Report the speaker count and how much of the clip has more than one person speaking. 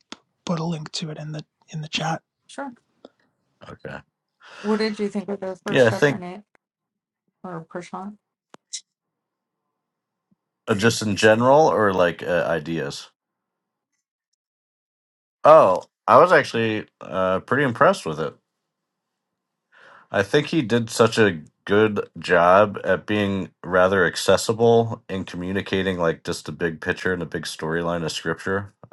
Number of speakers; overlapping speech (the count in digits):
3, about 2%